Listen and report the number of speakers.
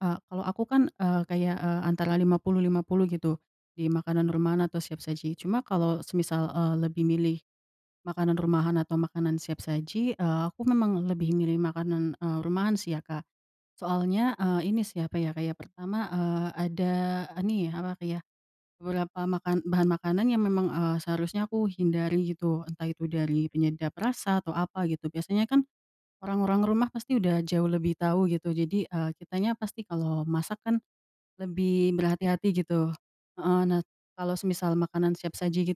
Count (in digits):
1